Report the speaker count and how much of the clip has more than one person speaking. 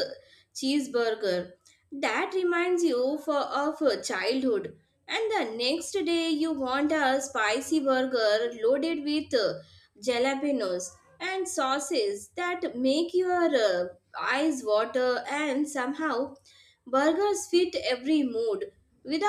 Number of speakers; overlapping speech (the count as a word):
one, no overlap